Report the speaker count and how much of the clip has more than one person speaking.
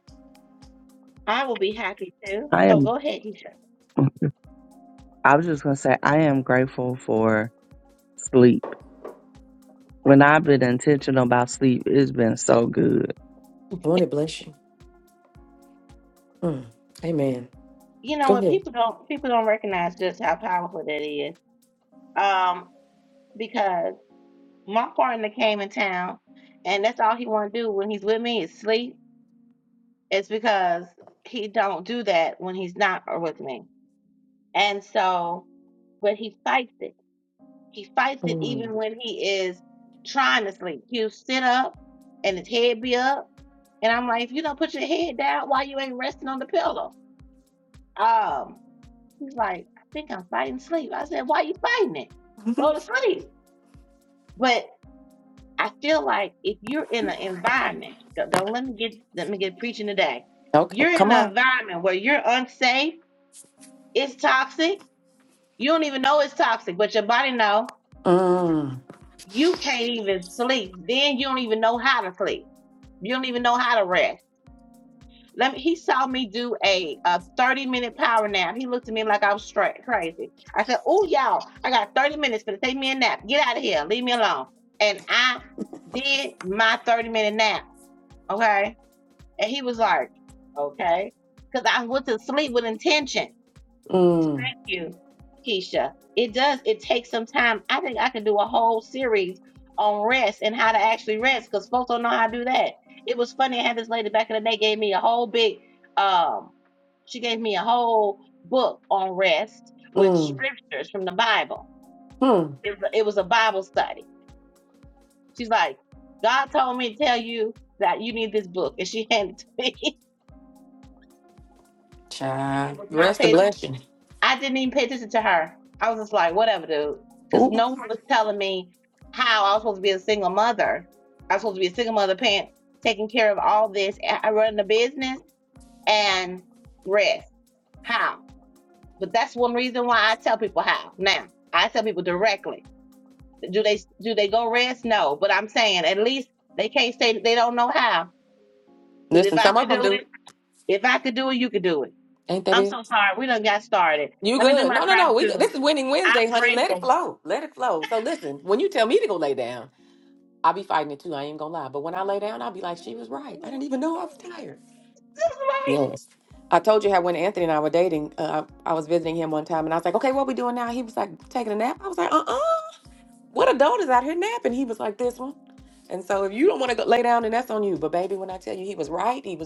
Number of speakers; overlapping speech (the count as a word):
three, about 4%